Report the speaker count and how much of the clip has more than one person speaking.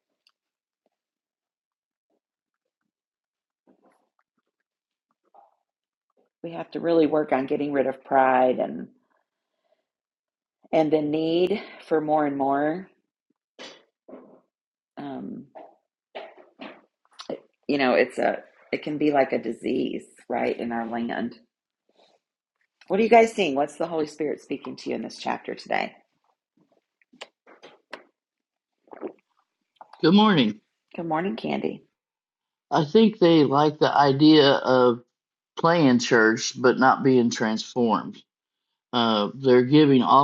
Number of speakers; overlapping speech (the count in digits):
2, no overlap